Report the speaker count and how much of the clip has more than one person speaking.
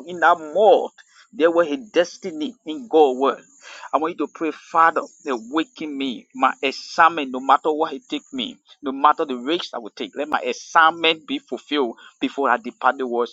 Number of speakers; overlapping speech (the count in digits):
1, no overlap